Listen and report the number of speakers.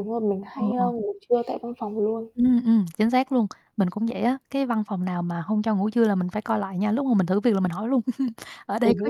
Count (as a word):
two